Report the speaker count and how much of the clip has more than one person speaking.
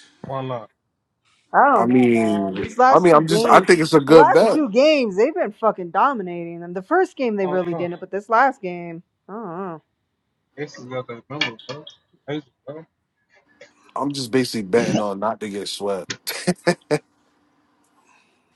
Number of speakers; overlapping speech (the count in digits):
3, about 16%